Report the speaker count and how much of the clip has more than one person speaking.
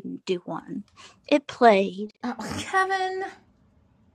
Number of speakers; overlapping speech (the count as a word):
two, no overlap